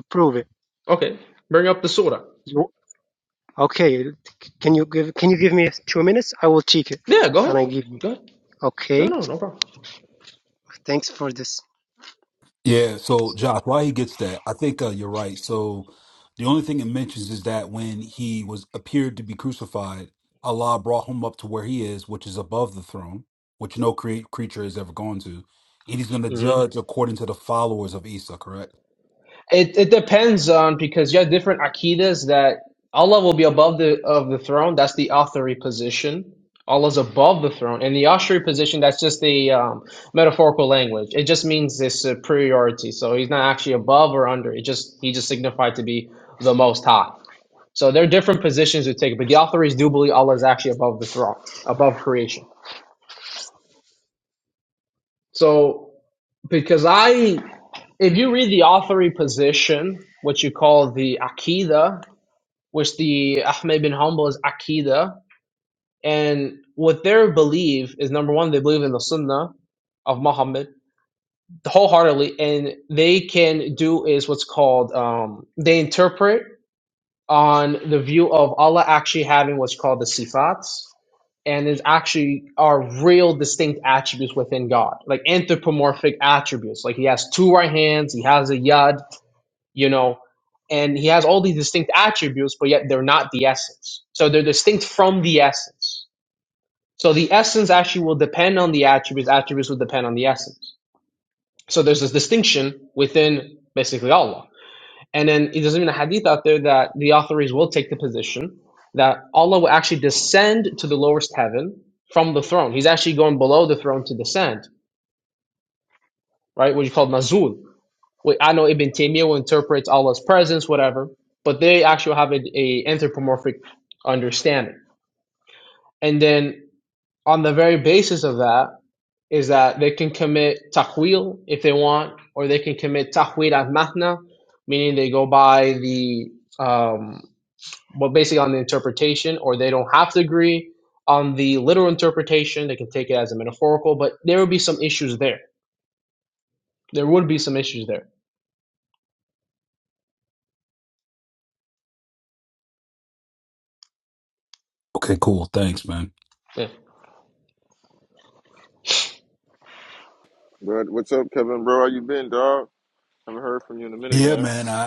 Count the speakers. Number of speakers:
four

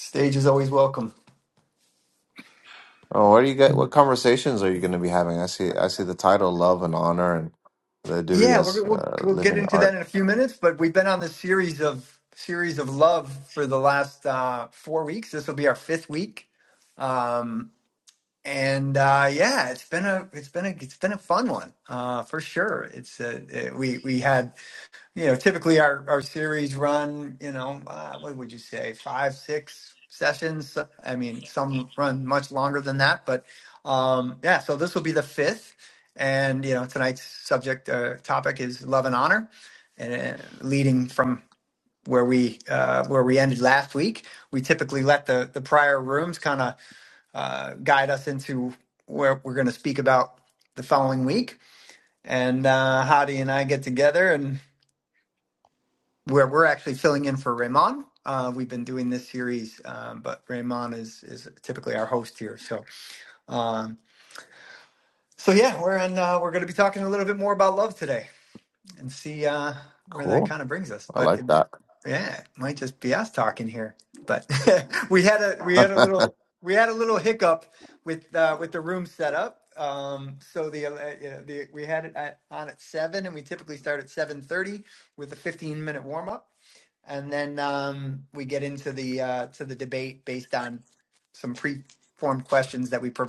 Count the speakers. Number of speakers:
two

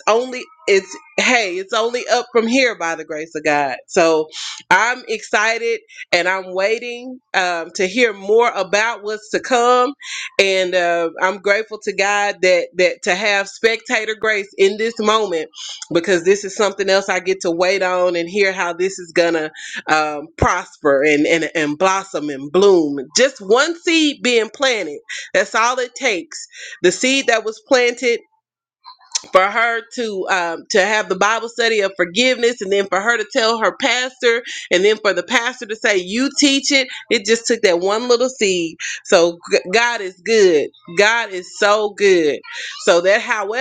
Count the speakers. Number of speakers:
one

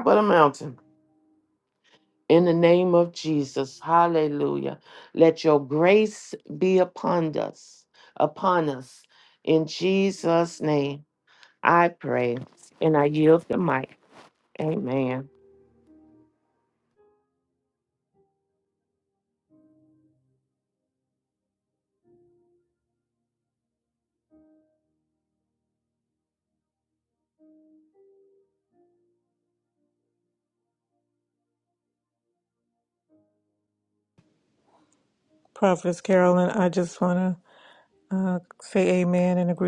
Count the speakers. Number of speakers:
two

